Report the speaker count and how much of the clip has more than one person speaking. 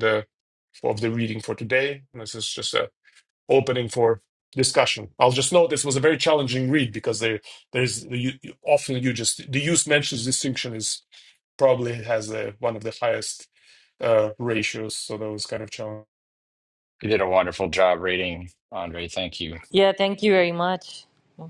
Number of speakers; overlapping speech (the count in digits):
3, no overlap